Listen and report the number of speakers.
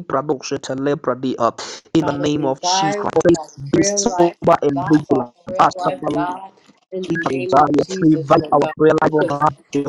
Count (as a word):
two